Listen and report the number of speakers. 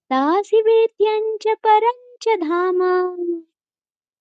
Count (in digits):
1